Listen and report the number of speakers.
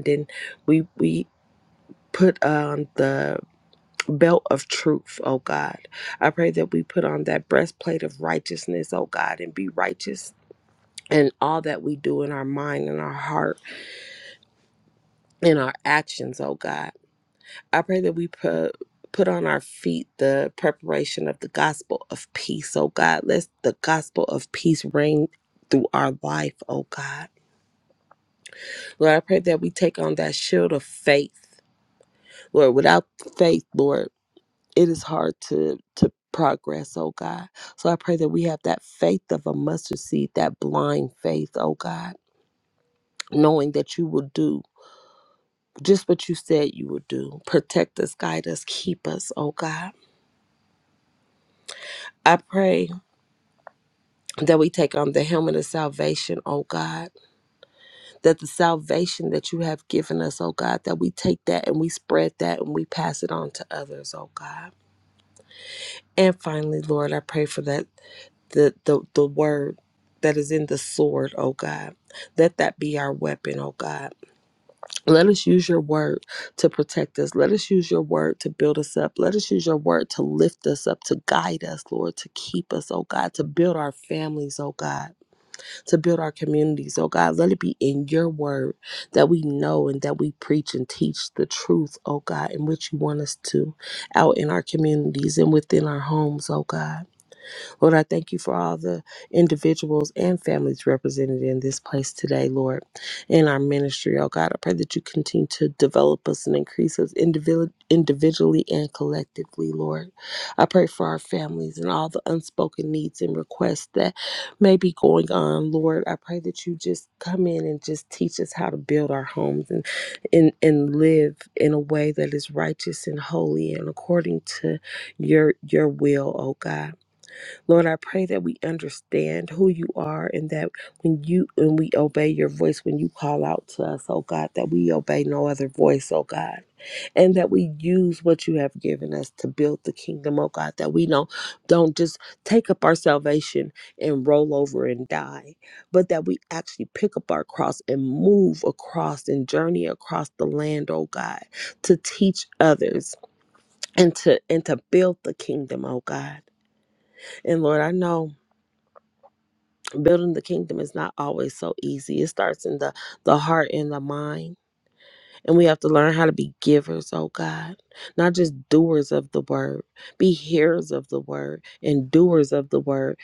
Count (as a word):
one